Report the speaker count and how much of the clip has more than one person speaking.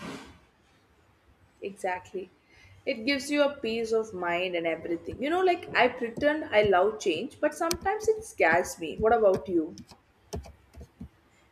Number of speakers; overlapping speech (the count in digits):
1, no overlap